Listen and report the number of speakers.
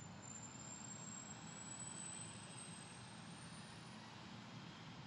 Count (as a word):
zero